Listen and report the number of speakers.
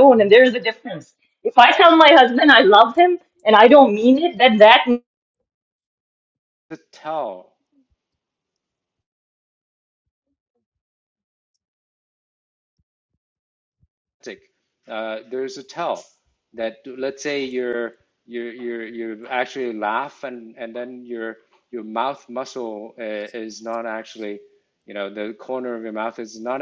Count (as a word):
two